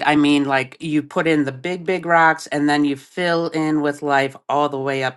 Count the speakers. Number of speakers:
one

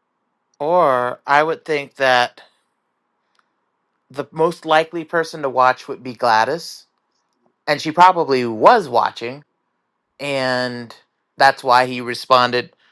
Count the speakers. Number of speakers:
one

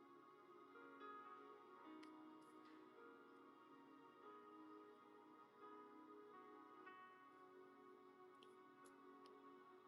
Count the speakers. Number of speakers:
zero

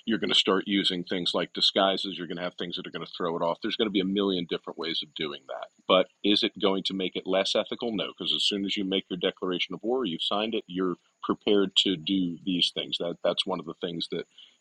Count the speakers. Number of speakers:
one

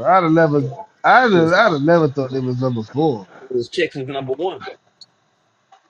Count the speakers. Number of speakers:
two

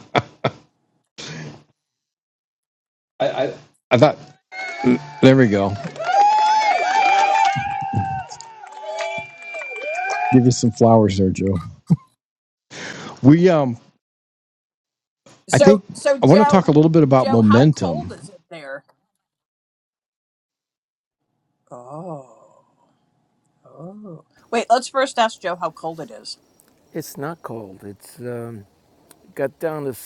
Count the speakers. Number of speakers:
three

